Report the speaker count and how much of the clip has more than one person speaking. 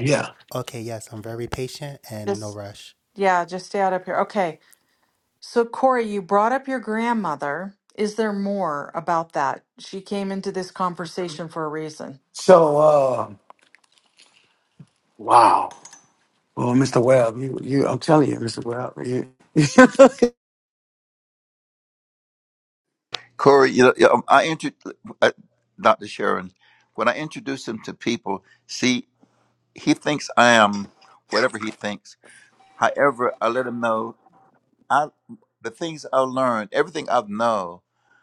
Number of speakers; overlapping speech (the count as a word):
four, under 1%